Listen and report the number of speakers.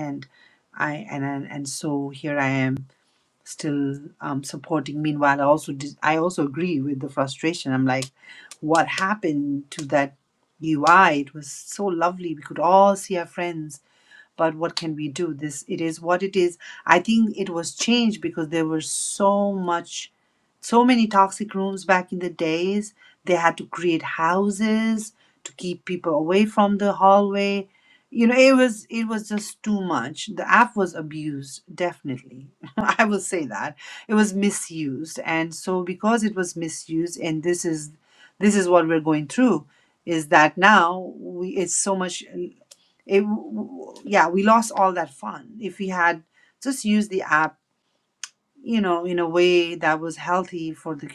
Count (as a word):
one